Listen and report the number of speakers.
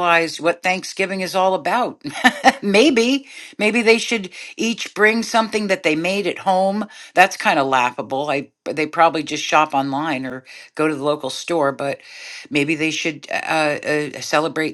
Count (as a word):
one